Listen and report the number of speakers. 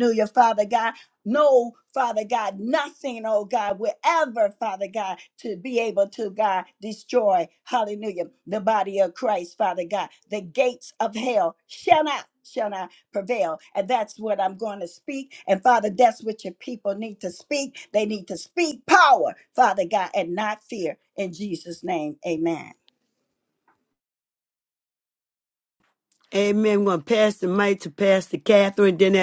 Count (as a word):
two